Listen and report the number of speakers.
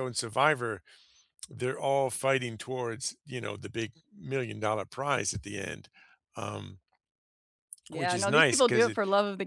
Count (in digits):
2